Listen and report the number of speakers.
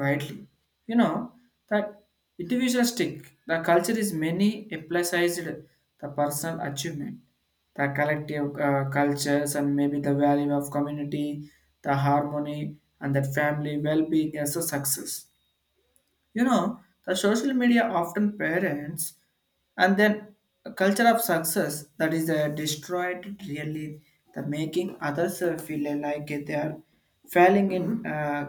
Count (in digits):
1